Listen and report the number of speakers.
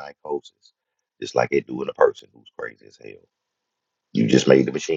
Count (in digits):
1